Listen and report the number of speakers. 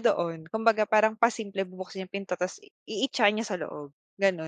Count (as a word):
one